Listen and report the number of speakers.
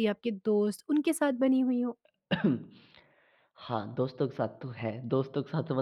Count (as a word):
two